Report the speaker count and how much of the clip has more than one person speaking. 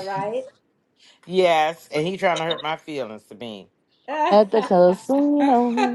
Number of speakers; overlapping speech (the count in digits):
3, about 14%